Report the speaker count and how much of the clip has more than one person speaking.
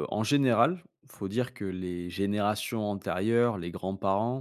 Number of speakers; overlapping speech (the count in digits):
1, no overlap